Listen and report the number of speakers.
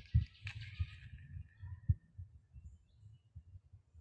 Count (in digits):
0